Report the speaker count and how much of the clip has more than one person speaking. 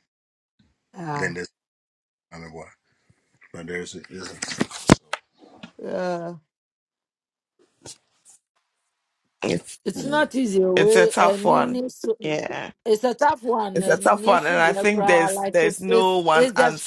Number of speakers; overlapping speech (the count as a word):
three, about 27%